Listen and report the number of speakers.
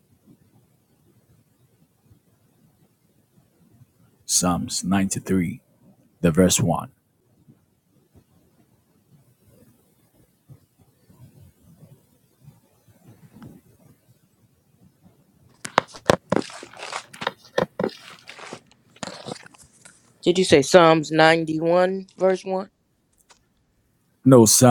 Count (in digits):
2